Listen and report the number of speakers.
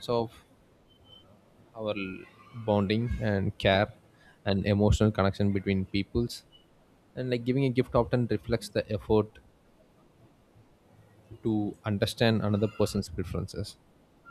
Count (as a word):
one